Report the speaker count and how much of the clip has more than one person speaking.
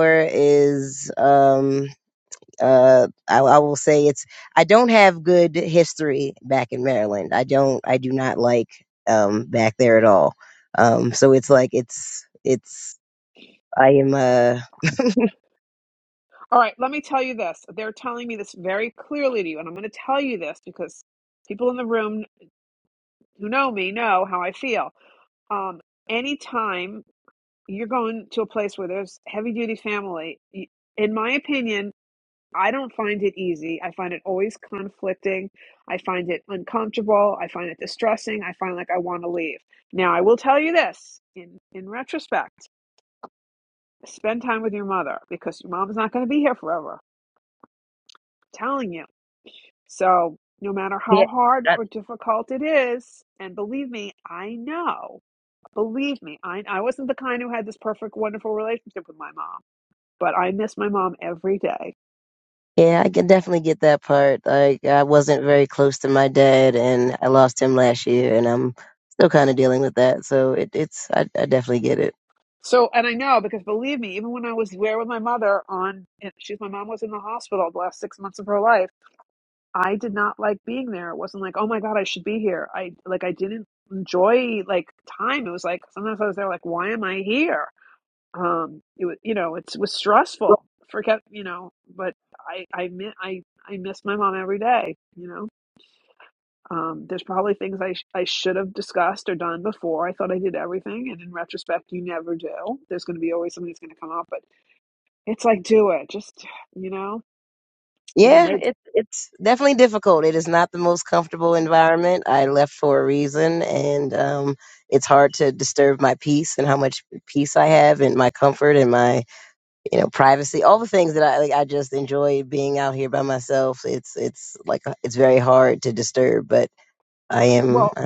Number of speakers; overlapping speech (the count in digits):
2, about 1%